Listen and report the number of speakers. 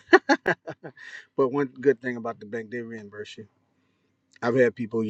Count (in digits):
1